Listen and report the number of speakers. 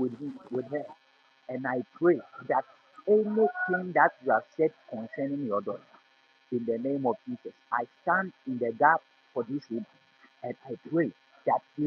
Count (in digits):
1